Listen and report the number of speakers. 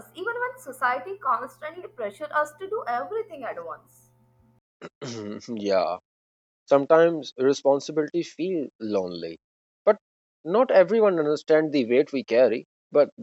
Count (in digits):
2